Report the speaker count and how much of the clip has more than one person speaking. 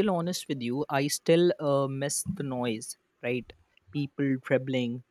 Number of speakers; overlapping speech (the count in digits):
1, no overlap